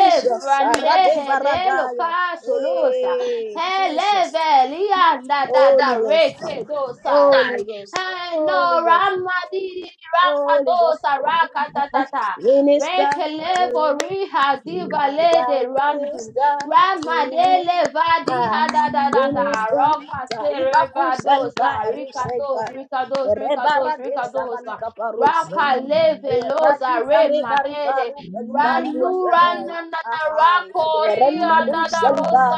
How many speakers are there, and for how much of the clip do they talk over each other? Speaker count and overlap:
two, about 65%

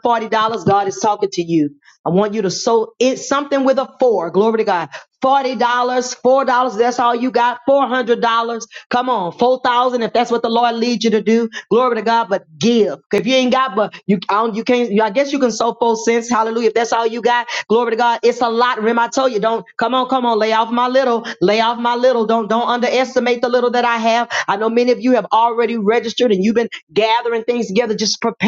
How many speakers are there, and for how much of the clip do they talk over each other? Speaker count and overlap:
one, no overlap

